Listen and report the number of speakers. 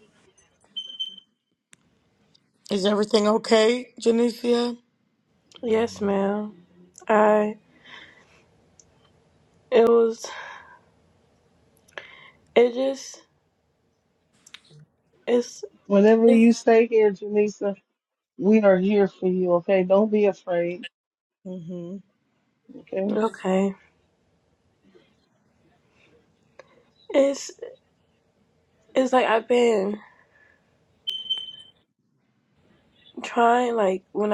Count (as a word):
three